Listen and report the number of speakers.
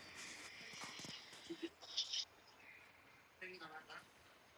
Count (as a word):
zero